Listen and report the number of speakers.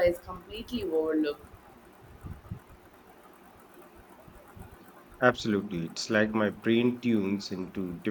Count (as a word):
two